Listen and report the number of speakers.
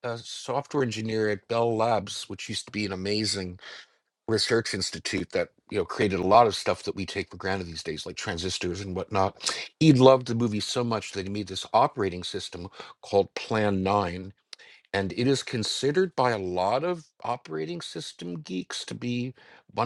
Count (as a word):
one